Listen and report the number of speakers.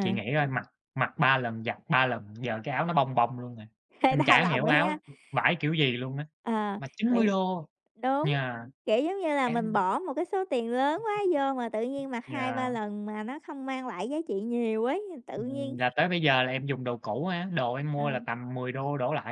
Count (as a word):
two